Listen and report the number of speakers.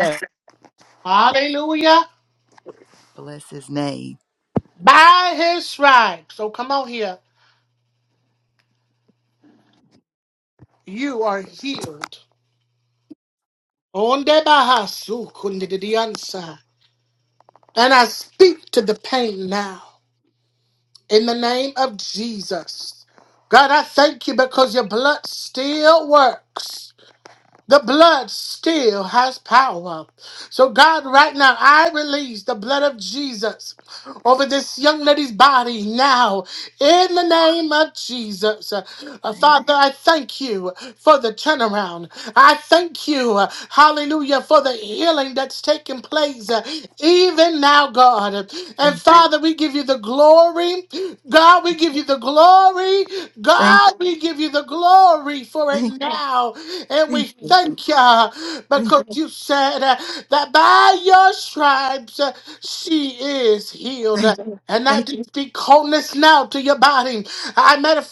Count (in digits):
2